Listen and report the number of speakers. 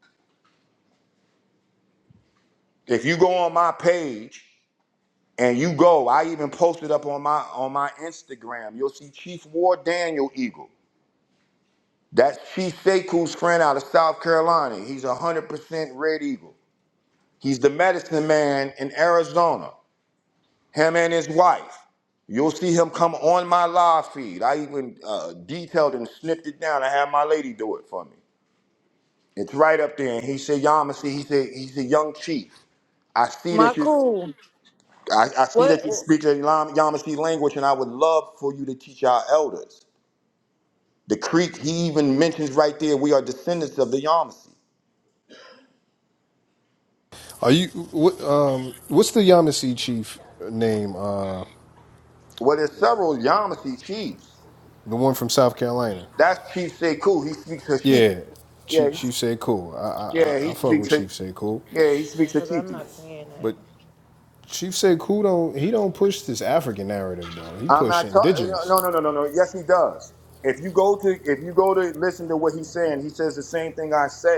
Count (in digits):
3